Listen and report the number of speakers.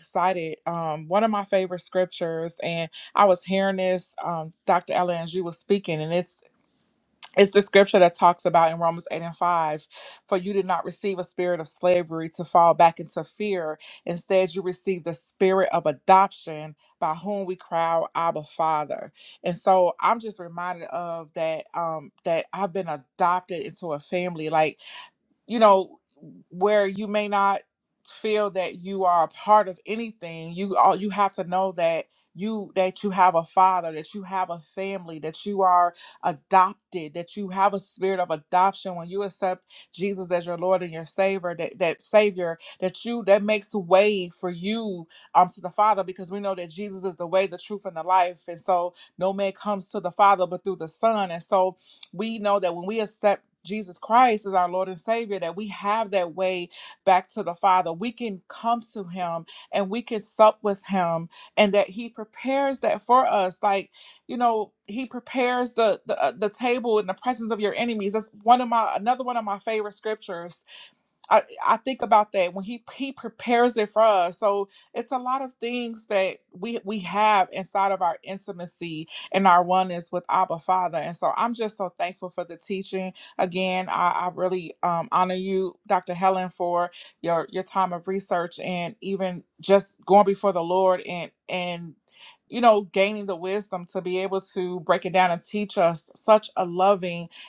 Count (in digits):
1